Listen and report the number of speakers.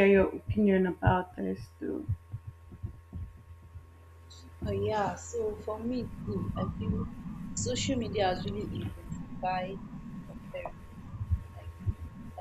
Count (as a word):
two